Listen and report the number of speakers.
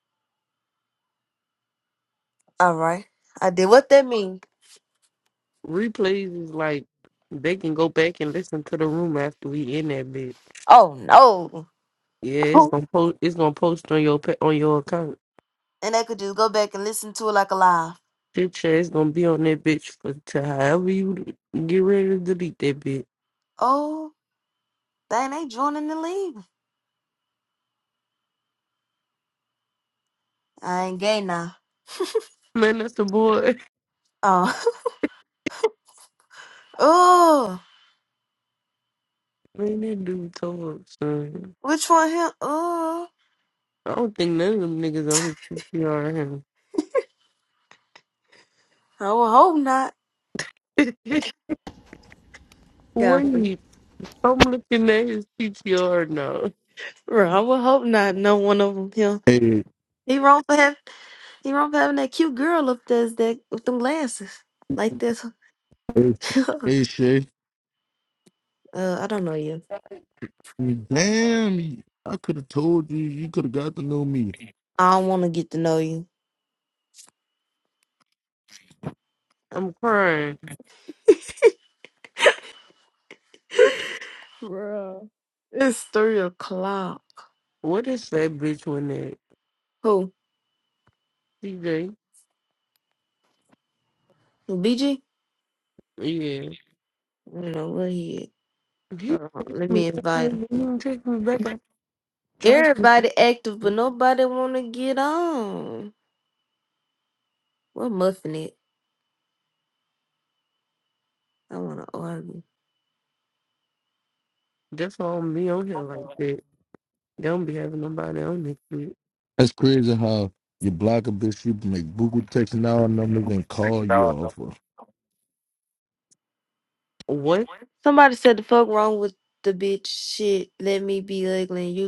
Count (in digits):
3